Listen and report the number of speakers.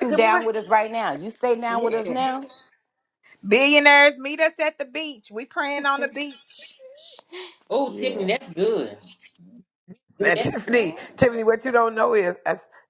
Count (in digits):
4